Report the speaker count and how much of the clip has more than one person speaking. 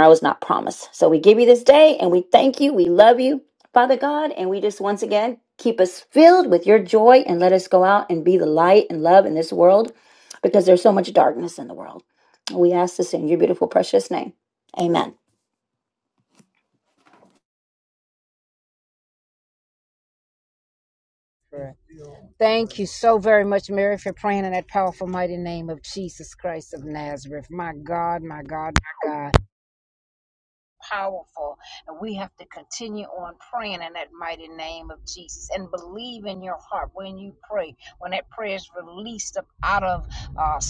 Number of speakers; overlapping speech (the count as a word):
two, no overlap